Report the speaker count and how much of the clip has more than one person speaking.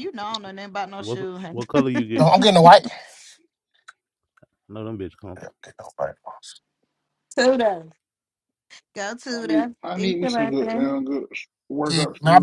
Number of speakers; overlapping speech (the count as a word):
four, about 21%